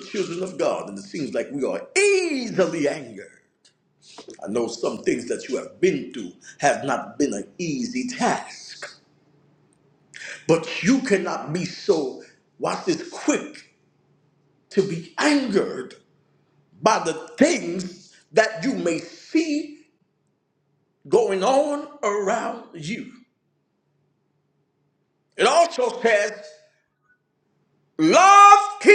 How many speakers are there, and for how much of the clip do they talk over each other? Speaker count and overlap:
one, no overlap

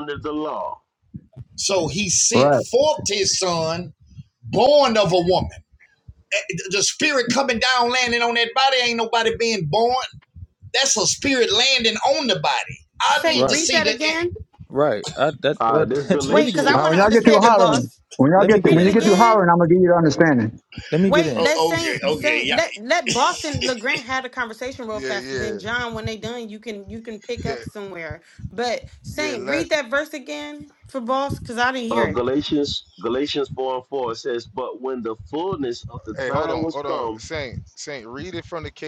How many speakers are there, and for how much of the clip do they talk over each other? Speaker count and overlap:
six, about 23%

